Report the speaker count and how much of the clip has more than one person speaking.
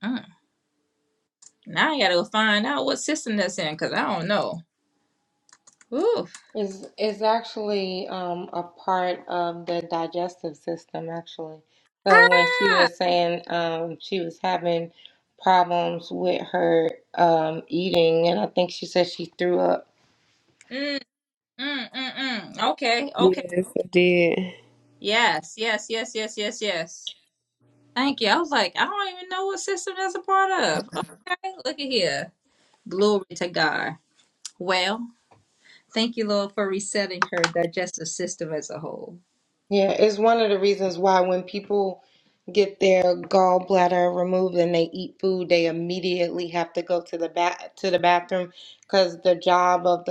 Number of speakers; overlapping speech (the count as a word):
three, about 2%